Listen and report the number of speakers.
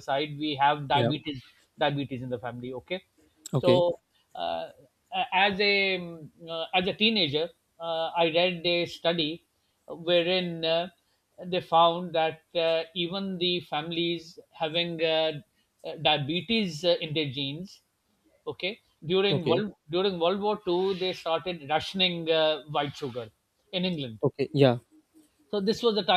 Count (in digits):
2